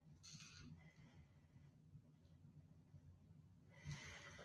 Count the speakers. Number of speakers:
zero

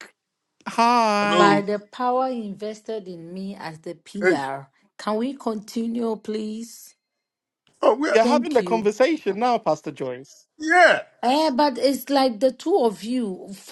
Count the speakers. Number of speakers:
three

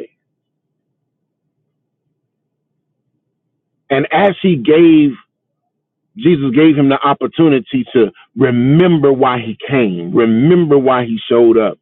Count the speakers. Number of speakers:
one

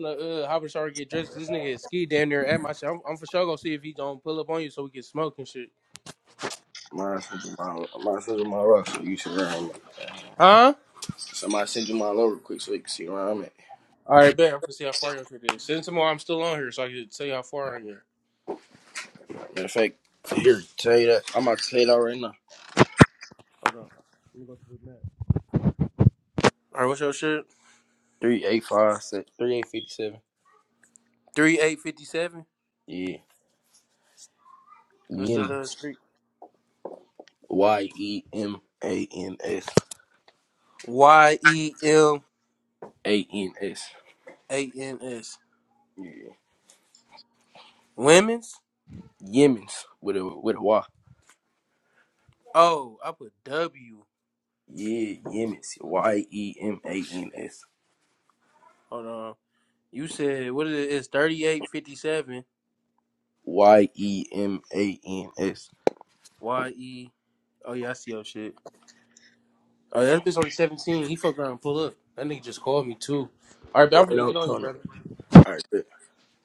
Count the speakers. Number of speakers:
two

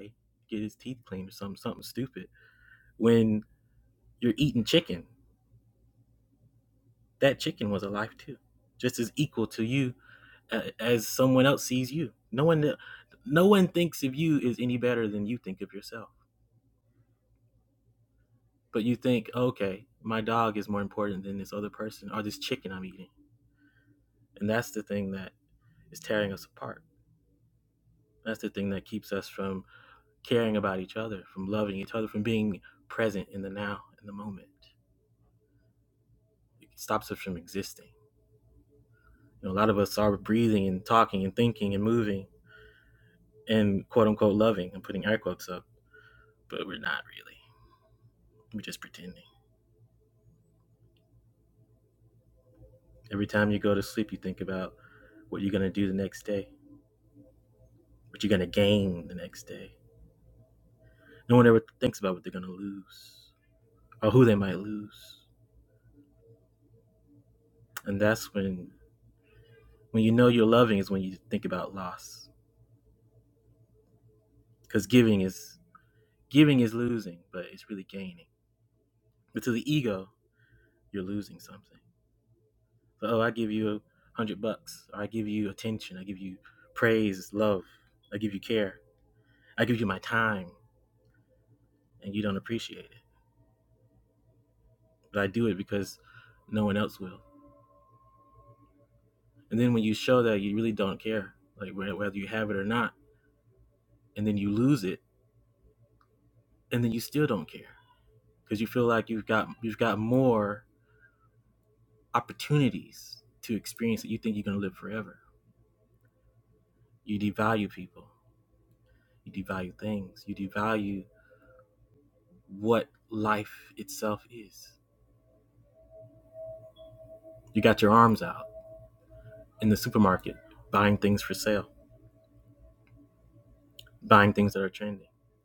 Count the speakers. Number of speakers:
one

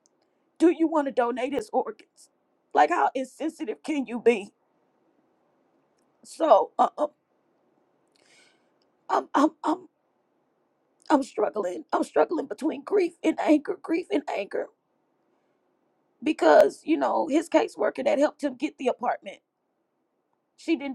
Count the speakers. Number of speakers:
one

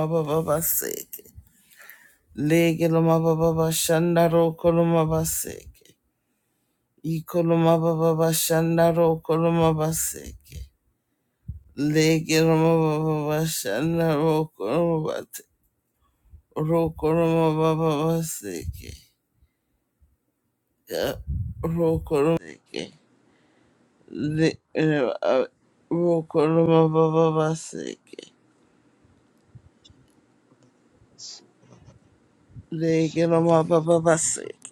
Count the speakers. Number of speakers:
one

